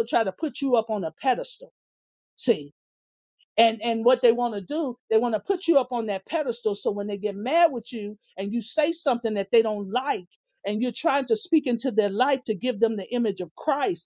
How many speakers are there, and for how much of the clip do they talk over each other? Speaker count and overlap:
one, no overlap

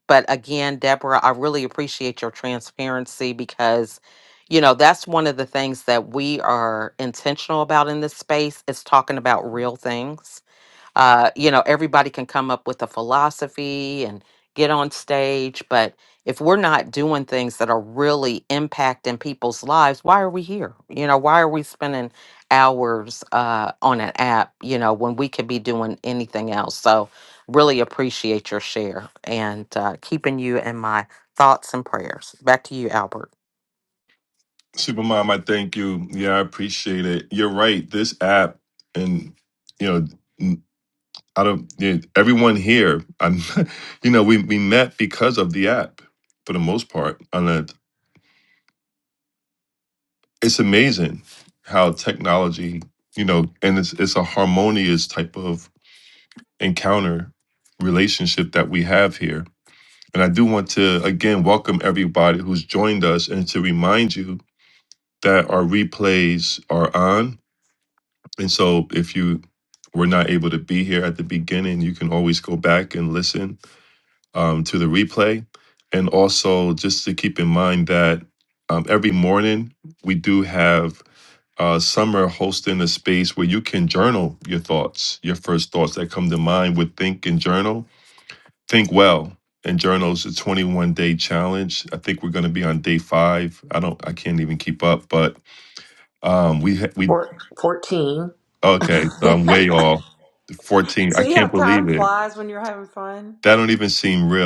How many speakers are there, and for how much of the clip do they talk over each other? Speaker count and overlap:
three, about 1%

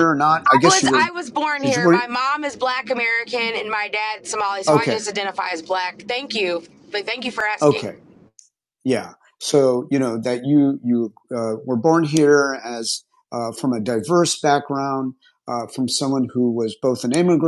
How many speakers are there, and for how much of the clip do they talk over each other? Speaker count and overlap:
two, about 9%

